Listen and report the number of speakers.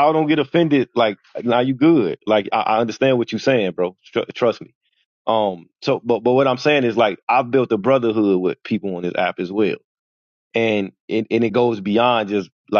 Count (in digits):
1